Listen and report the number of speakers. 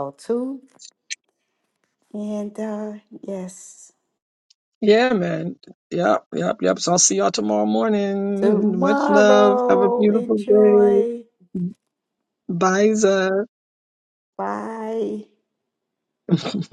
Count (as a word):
two